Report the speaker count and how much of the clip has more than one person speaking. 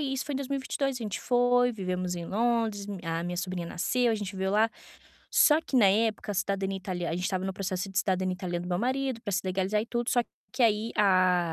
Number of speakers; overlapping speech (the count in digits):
1, no overlap